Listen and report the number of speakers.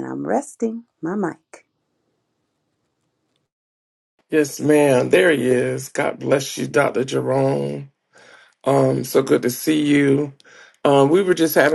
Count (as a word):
two